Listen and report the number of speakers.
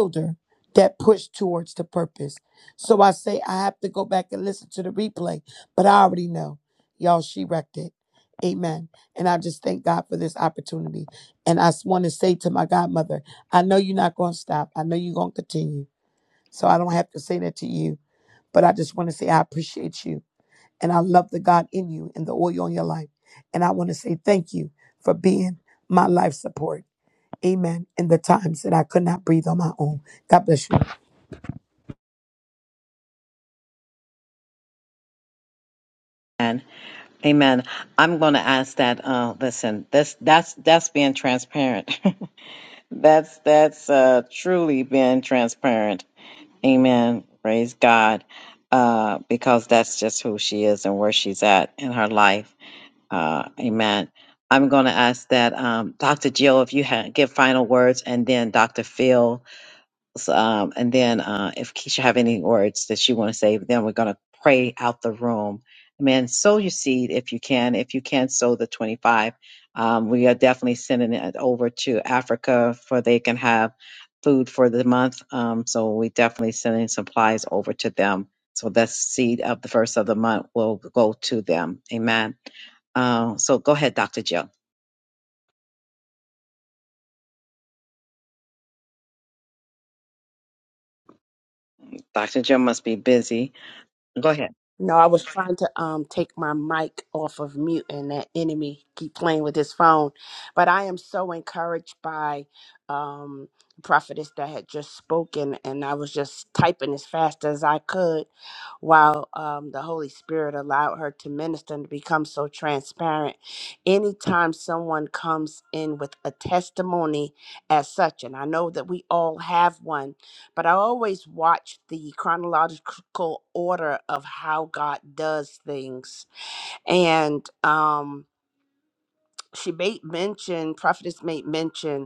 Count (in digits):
3